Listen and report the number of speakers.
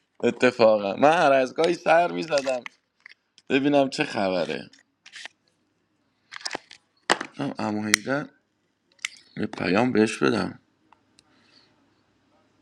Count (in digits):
1